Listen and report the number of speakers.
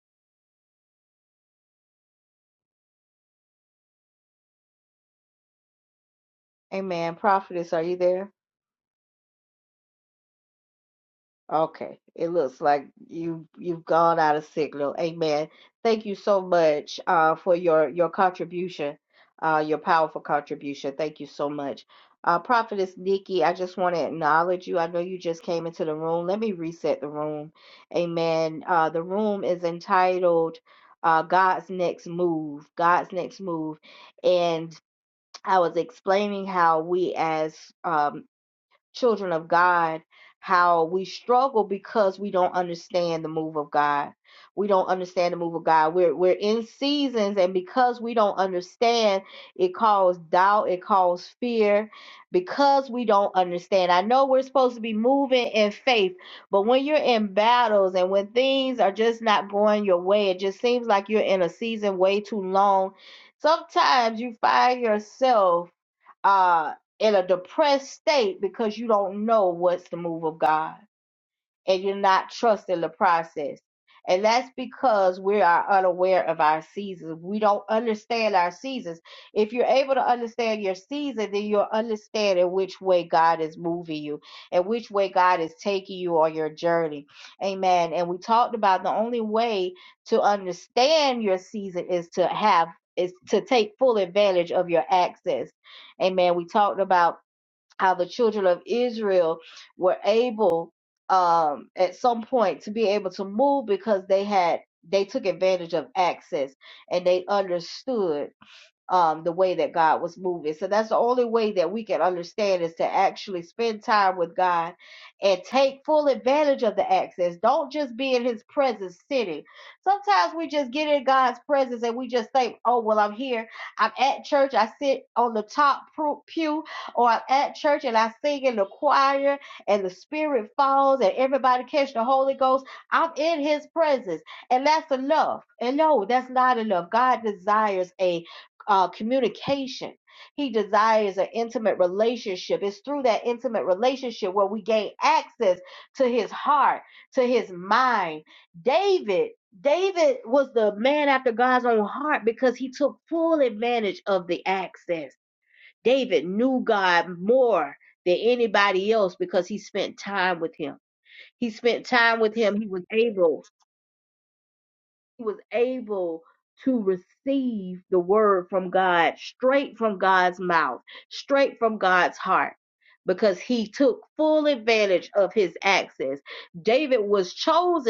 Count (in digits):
1